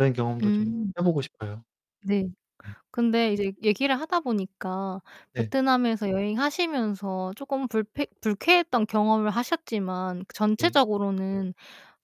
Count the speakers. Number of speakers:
two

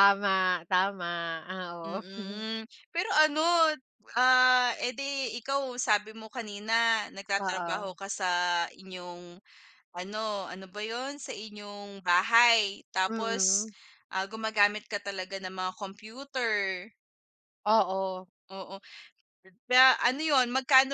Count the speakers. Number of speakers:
two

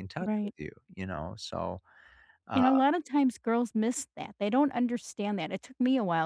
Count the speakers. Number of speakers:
two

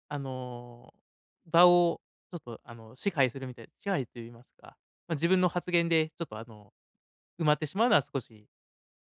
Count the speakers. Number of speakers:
one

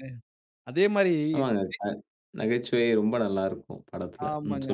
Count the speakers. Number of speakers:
two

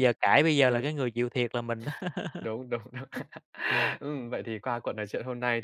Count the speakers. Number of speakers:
two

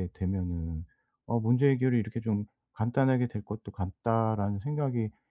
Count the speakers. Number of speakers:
one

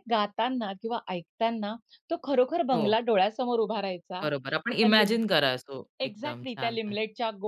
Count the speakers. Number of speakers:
two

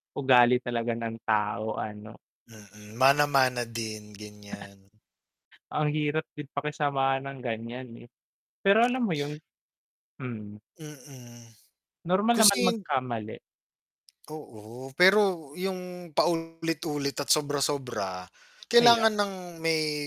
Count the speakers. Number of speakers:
two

